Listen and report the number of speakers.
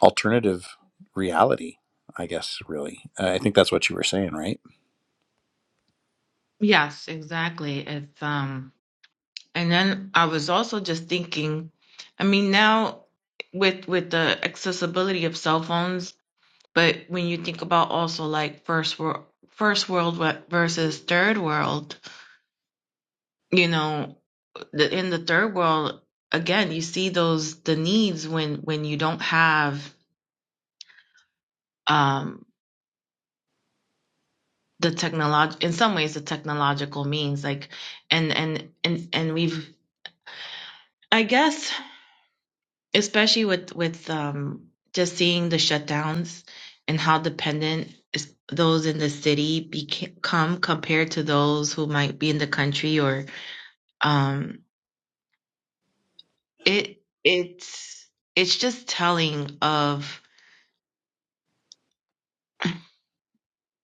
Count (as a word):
two